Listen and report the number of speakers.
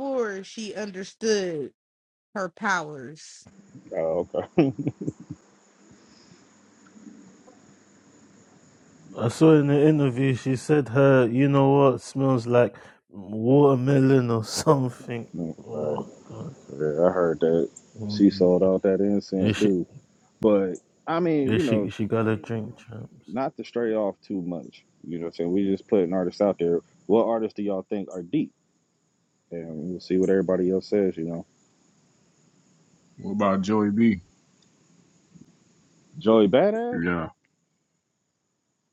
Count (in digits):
4